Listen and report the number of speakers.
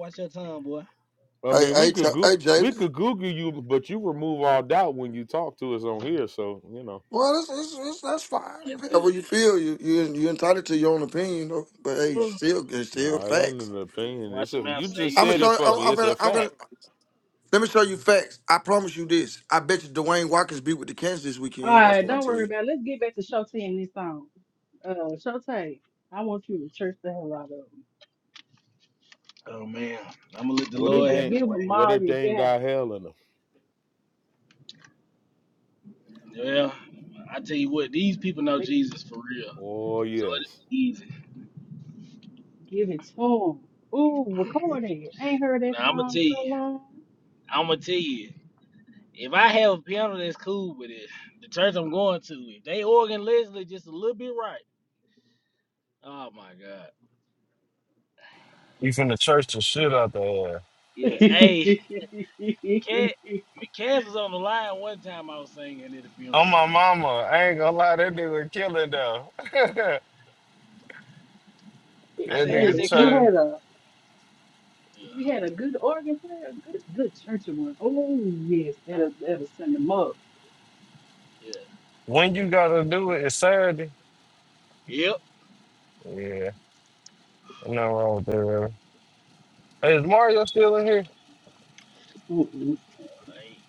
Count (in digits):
5